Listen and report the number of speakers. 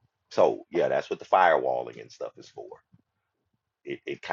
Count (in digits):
1